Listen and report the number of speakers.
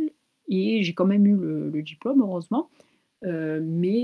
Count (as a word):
one